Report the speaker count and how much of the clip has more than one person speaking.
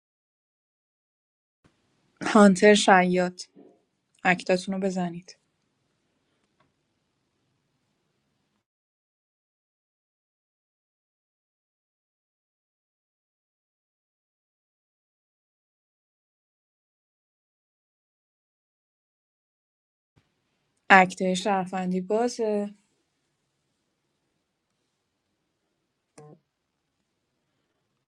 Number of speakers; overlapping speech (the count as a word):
one, no overlap